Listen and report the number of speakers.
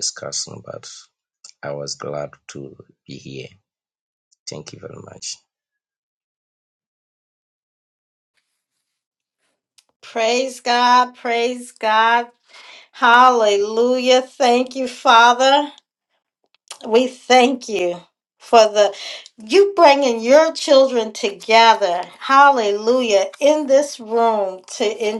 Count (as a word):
two